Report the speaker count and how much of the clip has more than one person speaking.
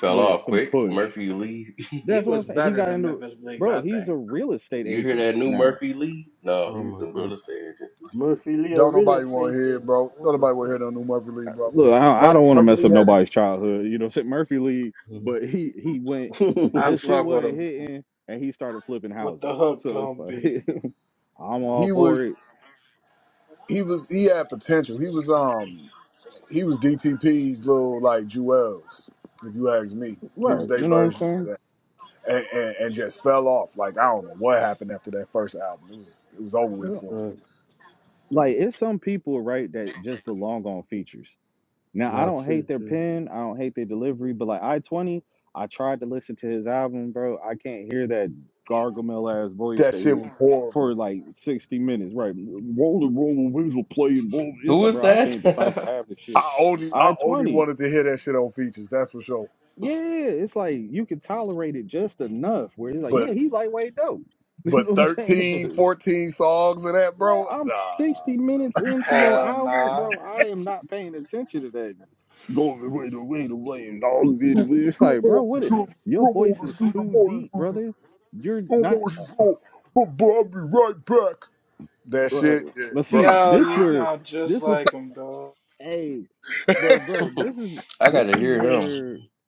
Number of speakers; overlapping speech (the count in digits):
5, about 25%